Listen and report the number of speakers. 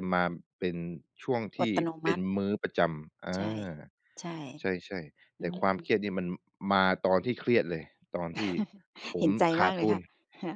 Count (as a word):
two